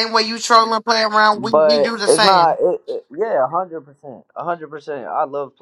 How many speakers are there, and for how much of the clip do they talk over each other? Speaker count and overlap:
2, about 20%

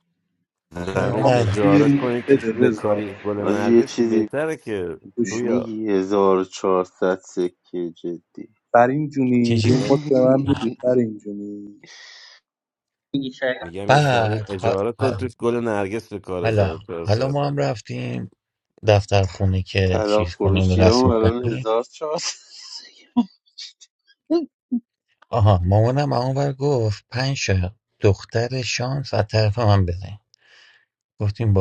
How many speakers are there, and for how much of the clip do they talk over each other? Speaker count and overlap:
5, about 24%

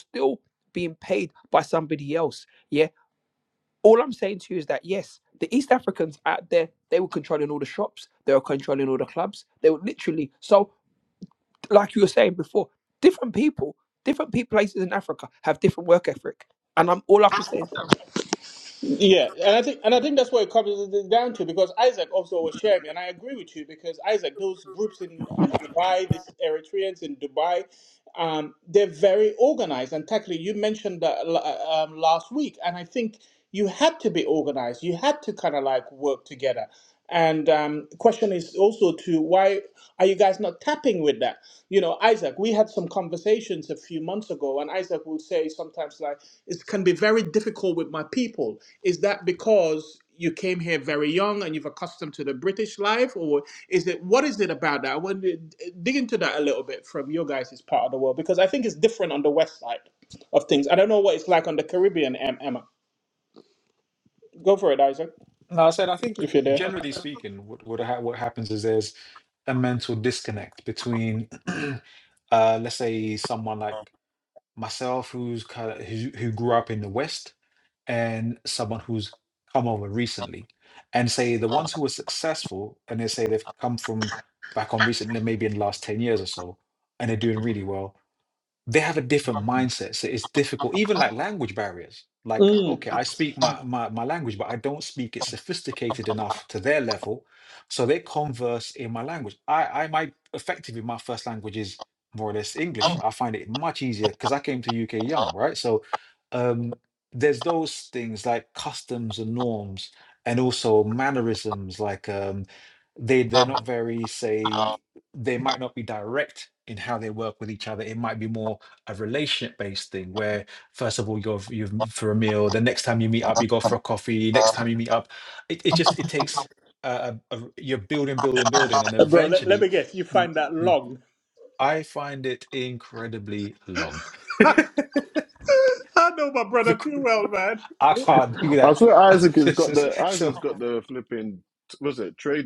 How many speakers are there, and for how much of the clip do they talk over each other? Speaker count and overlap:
4, about 2%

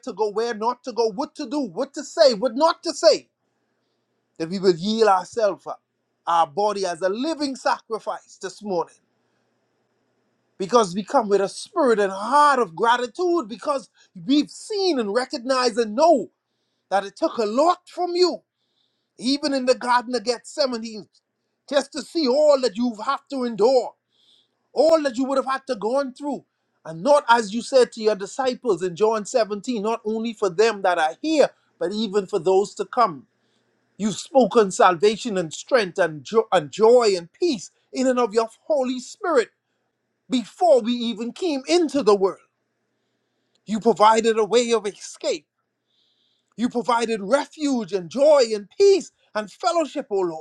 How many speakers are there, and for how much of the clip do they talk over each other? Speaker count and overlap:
1, no overlap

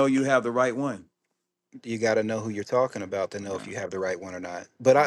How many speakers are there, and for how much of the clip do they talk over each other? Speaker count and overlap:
2, about 4%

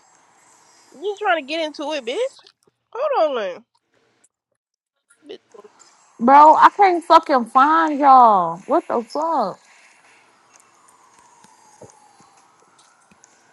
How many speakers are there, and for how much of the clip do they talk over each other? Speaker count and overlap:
2, no overlap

